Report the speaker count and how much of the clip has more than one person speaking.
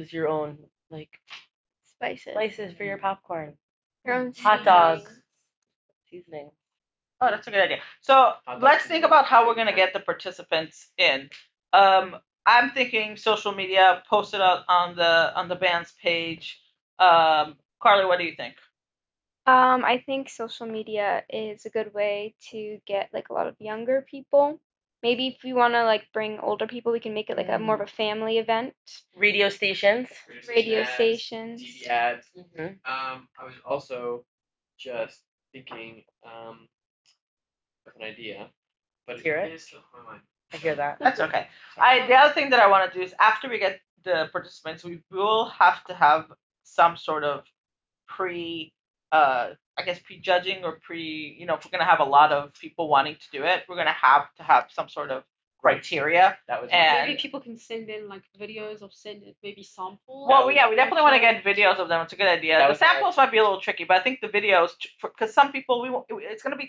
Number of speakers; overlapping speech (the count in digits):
5, about 11%